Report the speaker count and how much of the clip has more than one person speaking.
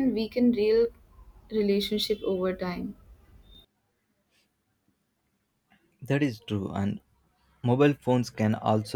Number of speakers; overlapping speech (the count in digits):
2, no overlap